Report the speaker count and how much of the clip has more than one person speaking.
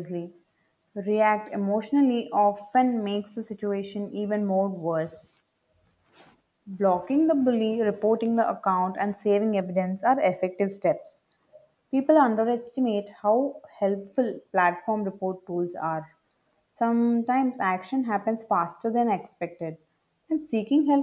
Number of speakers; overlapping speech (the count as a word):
one, no overlap